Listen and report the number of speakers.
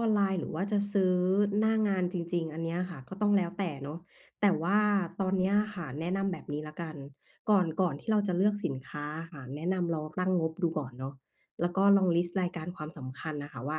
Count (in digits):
1